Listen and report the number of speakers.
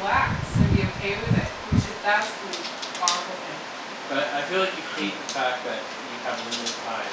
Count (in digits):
2